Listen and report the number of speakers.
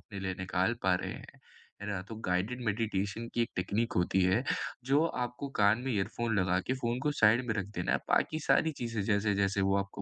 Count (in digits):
1